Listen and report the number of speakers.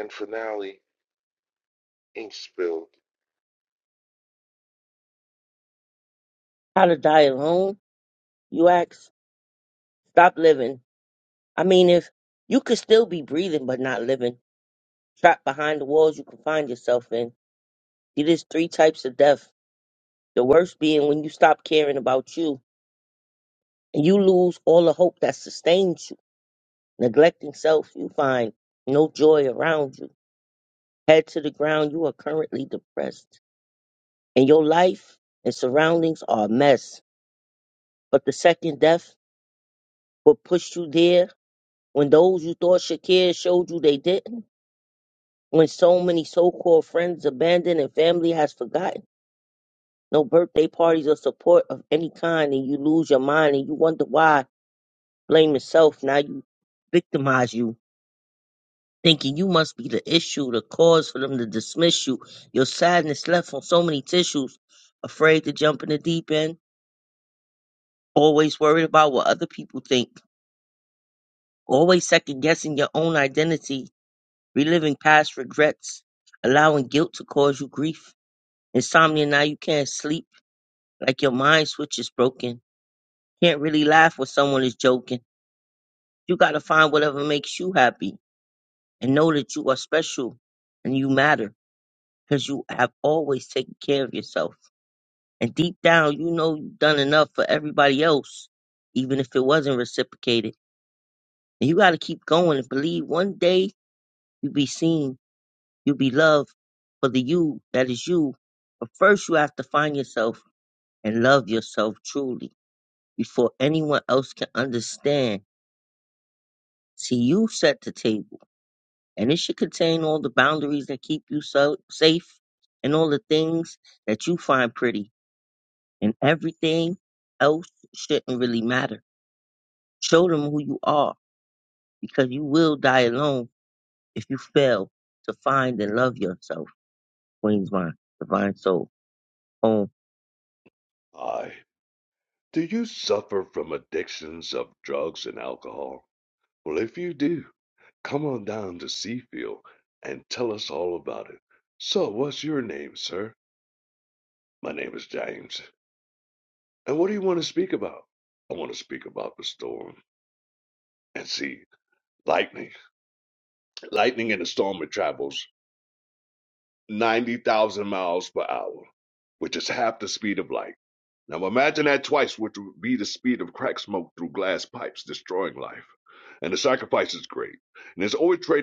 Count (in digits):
3